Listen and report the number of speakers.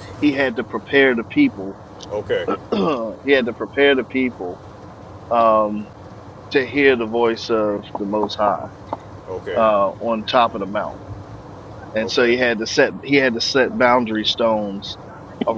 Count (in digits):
2